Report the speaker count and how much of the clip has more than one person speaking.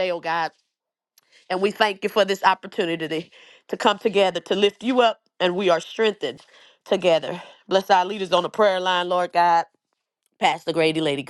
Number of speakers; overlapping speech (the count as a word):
one, no overlap